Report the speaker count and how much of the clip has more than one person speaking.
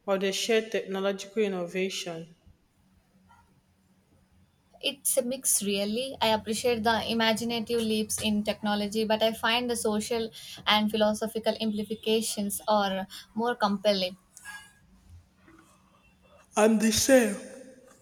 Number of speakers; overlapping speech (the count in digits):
2, no overlap